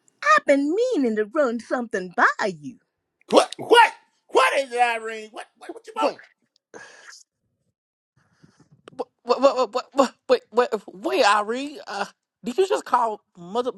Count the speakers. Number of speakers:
3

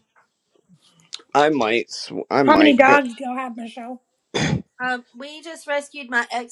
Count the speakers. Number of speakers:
3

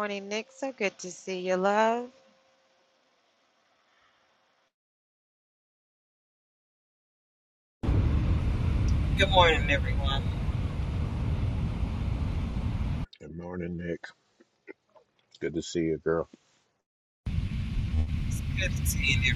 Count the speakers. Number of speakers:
3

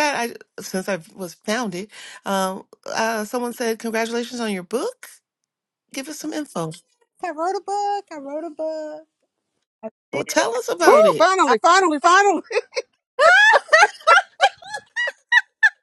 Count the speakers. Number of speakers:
3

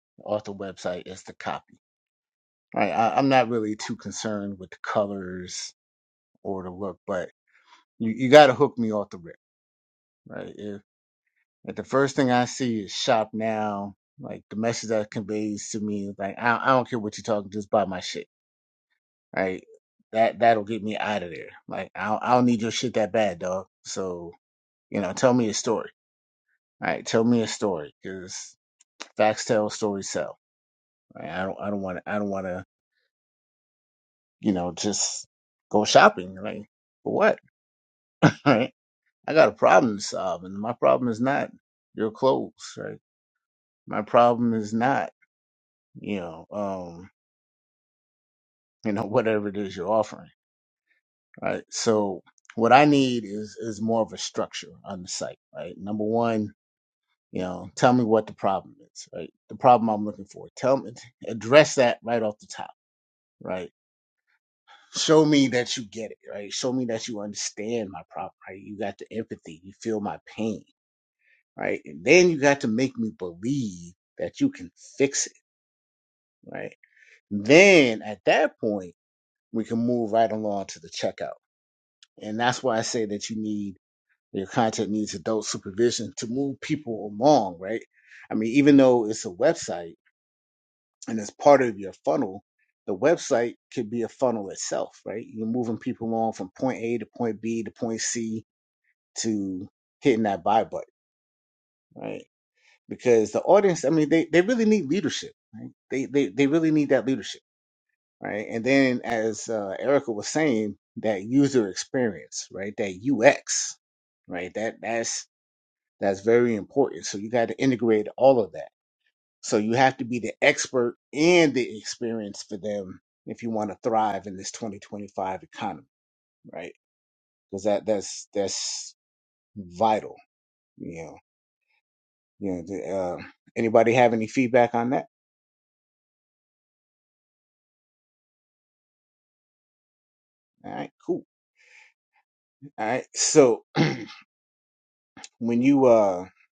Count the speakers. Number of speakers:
1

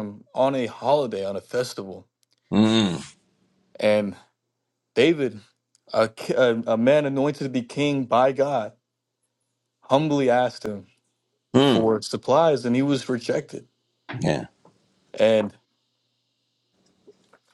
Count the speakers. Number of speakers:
2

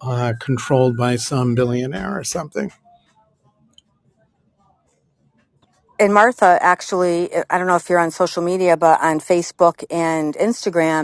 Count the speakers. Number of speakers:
2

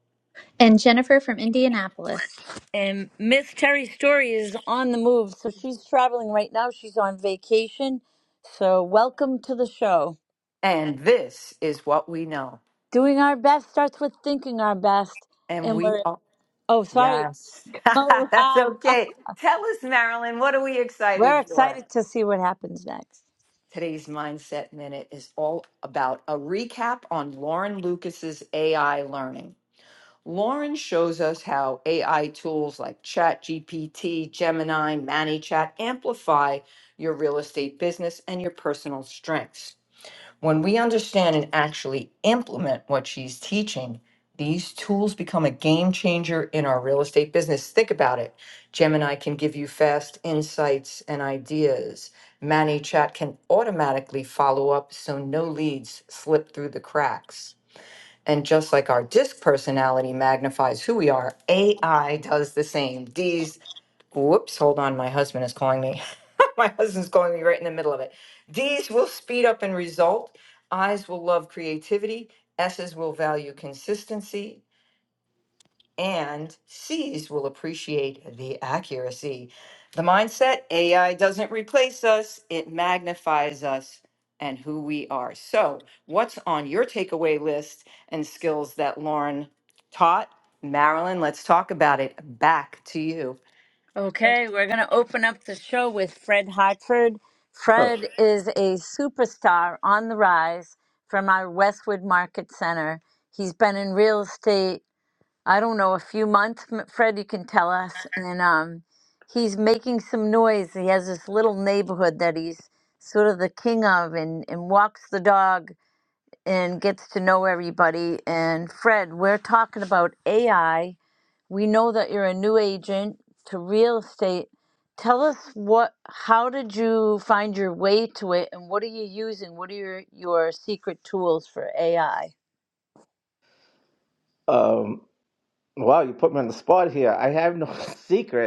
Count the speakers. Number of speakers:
4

